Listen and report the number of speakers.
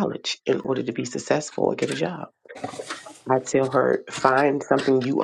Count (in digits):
1